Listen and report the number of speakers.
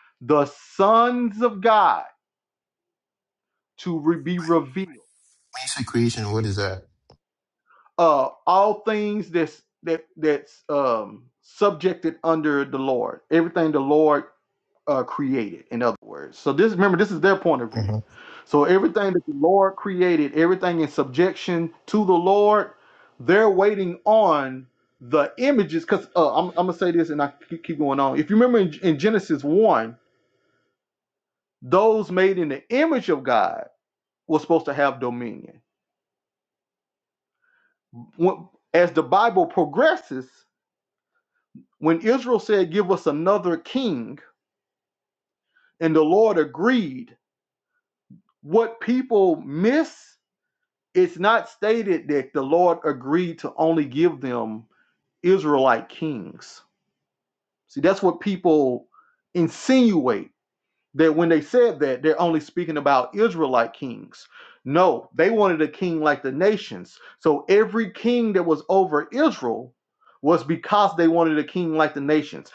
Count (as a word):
two